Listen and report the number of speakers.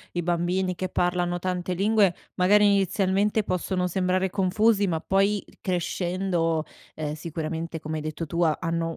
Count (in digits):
1